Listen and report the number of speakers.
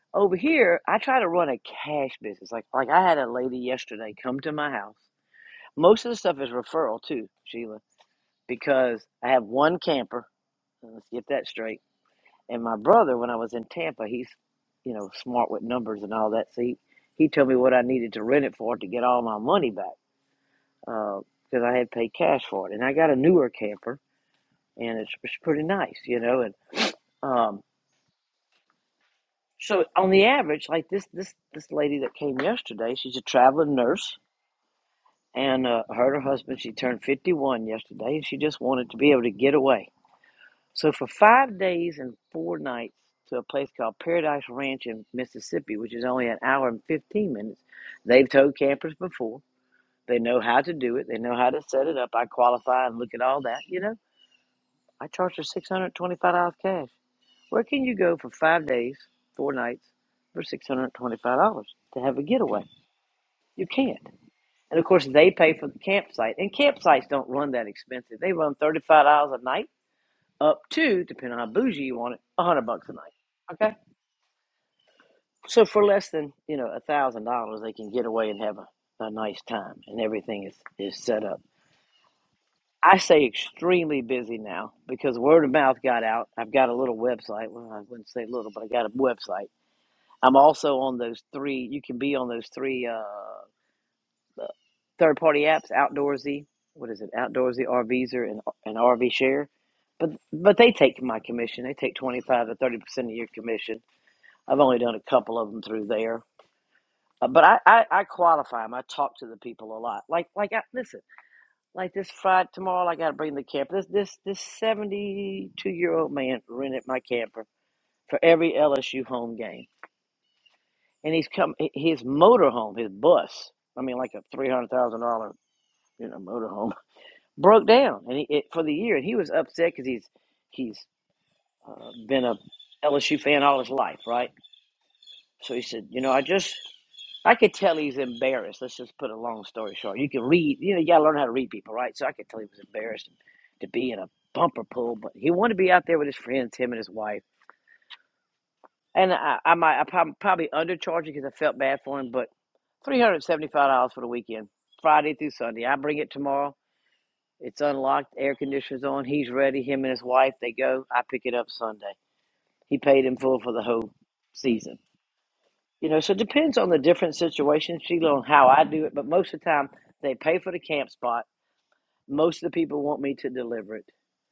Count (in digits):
1